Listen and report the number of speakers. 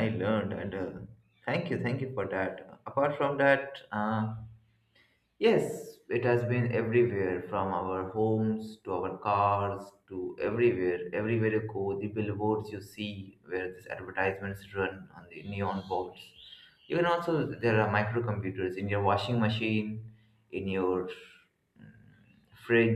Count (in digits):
1